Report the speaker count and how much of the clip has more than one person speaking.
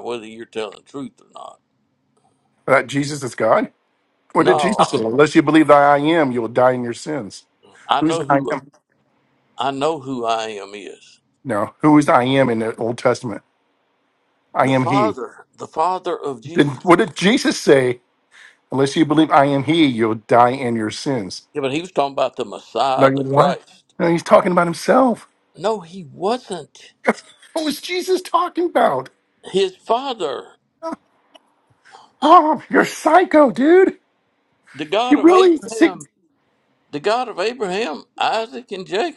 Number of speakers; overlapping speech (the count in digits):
2, about 8%